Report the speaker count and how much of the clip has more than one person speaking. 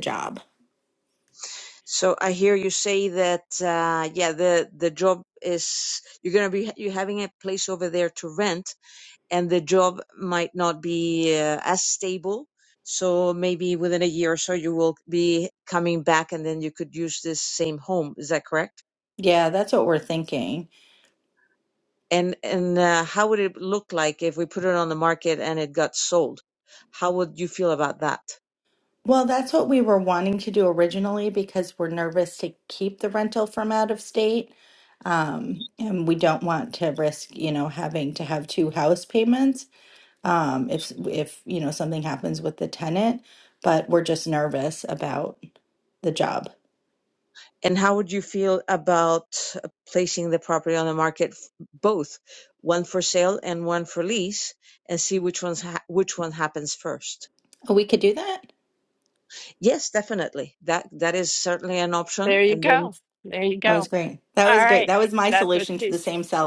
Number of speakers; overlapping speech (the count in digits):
3, about 3%